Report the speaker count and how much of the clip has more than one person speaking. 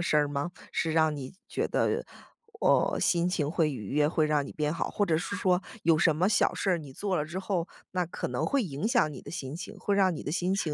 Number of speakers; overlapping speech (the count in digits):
1, no overlap